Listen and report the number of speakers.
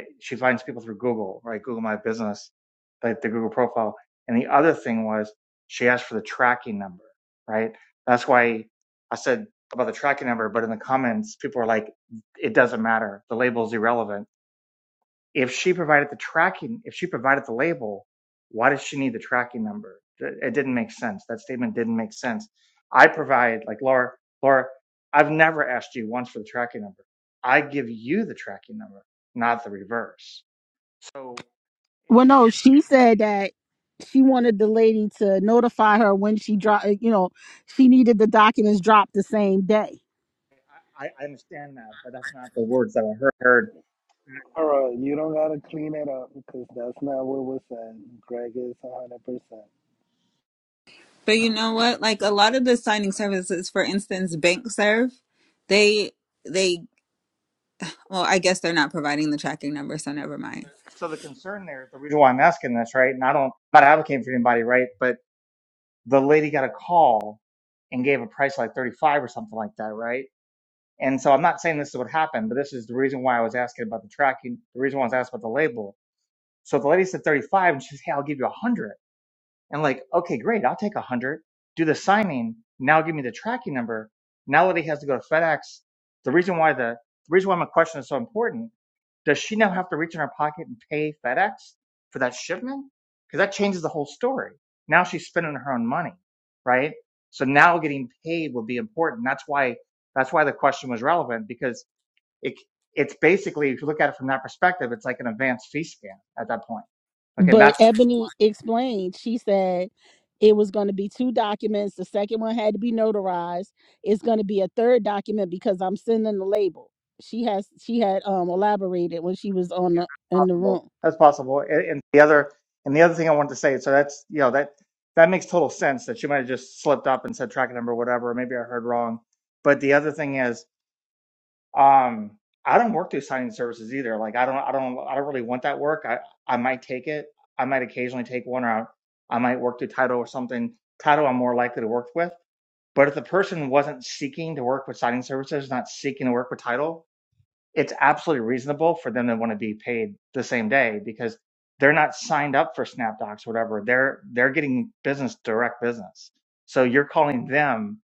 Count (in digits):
4